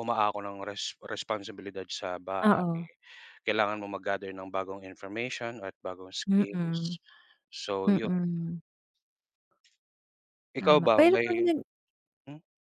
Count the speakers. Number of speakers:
2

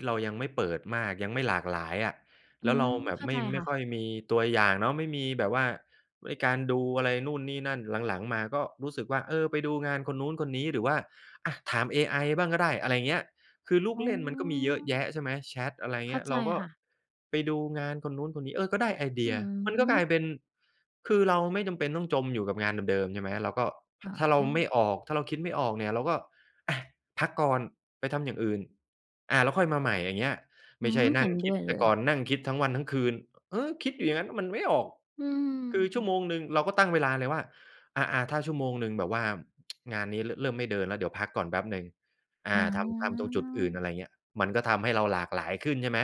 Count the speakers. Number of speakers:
2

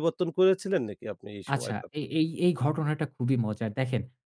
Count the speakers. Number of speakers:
2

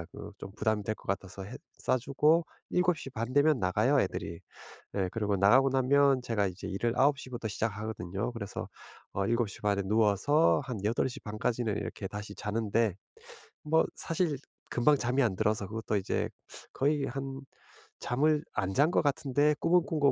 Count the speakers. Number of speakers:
1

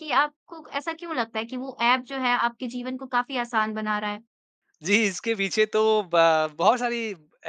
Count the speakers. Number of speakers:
2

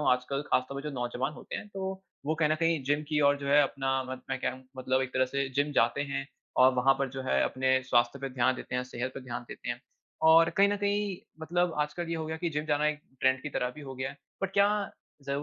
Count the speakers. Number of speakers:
1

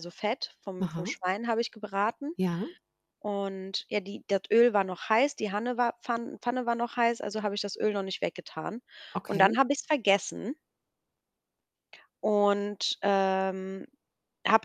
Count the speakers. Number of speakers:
2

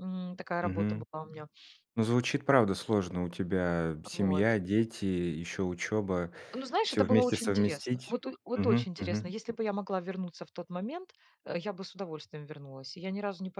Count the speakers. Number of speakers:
2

